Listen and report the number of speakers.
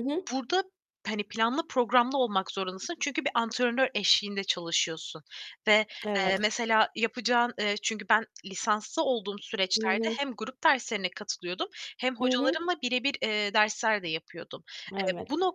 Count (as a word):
two